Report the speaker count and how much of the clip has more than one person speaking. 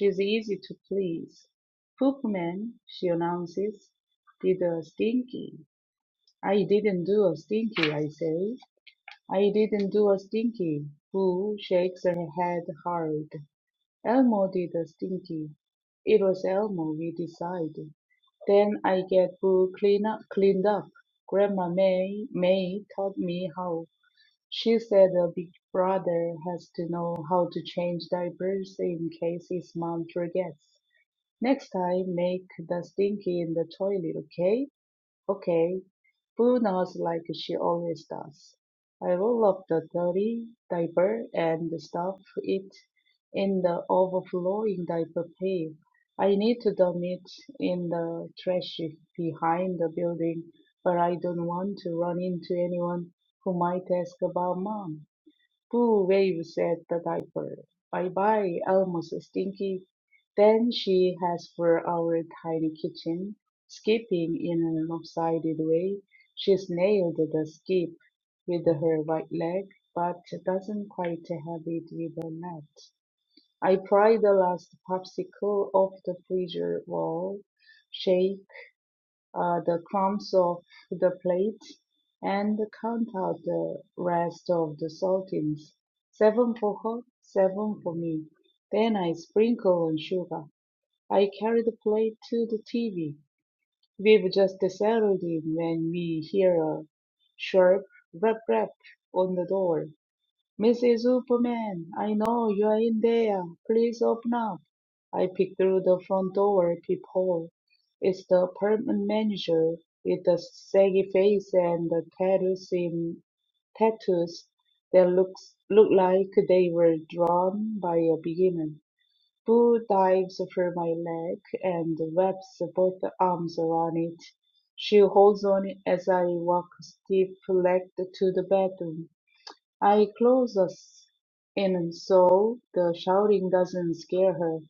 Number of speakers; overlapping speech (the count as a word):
one, no overlap